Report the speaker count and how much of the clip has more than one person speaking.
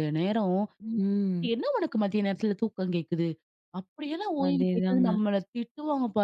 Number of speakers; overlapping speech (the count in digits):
2, about 12%